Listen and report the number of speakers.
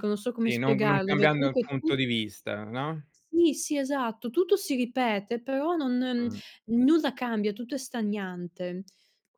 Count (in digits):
2